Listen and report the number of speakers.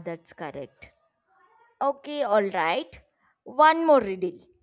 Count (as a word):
one